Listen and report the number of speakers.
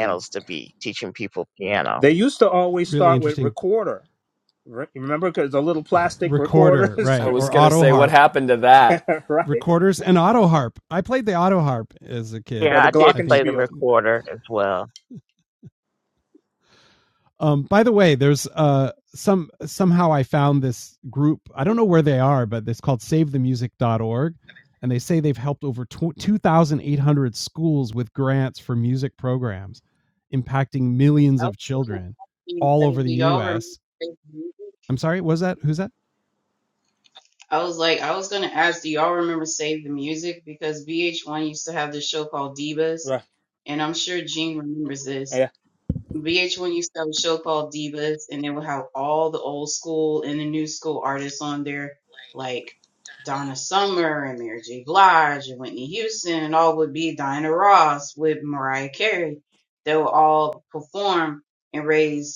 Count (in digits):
5